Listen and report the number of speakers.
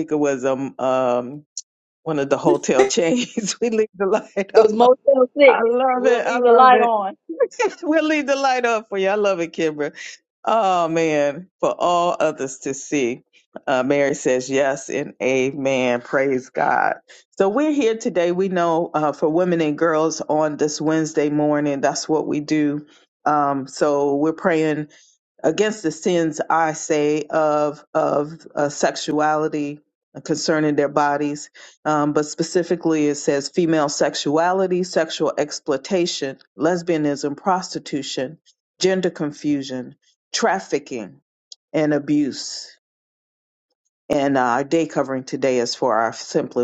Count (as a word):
two